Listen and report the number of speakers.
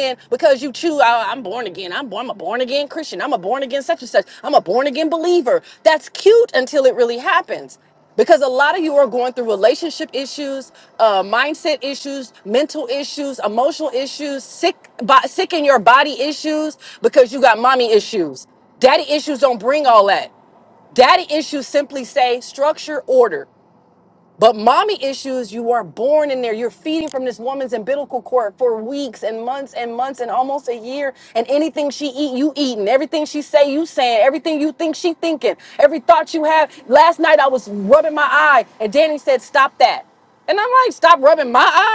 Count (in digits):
1